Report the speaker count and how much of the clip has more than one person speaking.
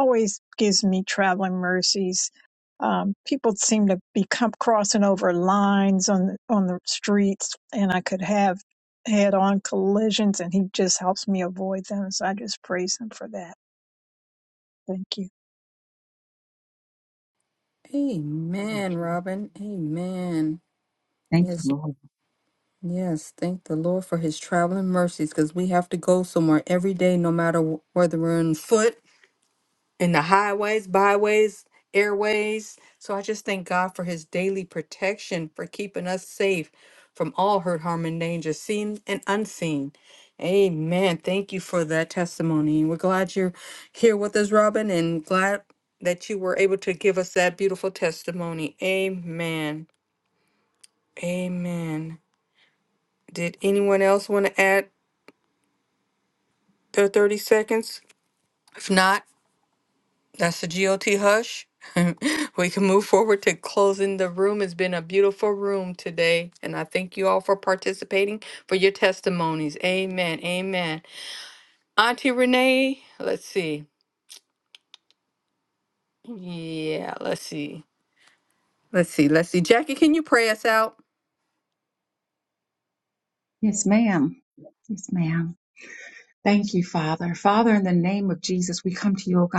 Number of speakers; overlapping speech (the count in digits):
3, under 1%